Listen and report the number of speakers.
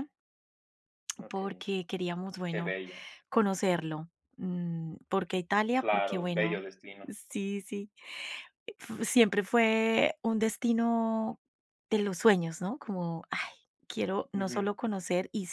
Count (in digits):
2